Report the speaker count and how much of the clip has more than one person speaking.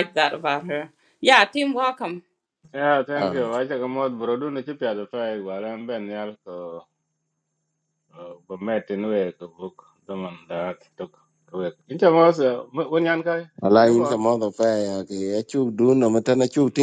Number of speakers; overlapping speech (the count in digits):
3, about 4%